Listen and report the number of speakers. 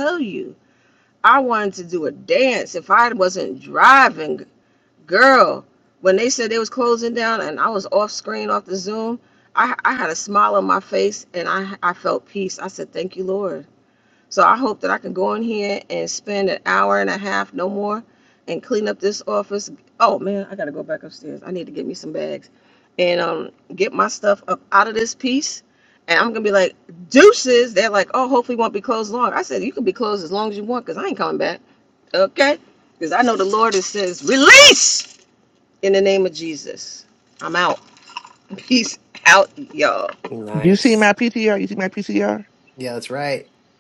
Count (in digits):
3